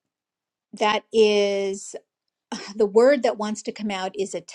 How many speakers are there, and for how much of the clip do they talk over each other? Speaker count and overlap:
1, no overlap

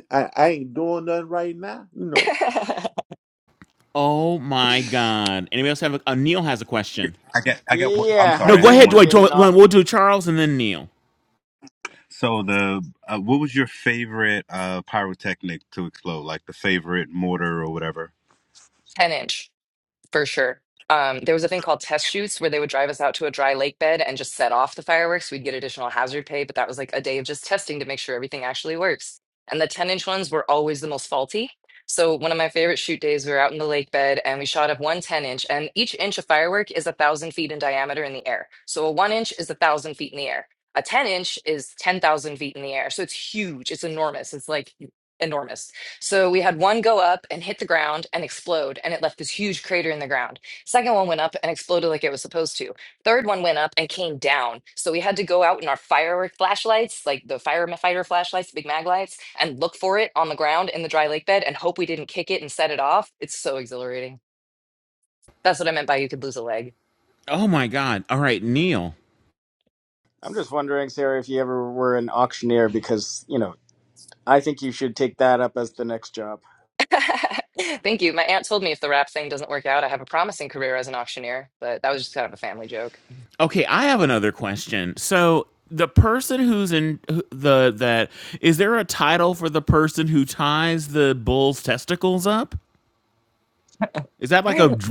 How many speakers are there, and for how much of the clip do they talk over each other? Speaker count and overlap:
5, about 2%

